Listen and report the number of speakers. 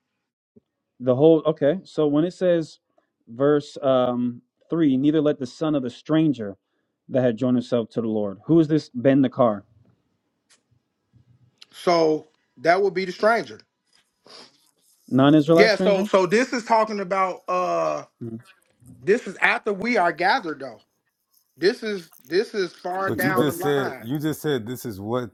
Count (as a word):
three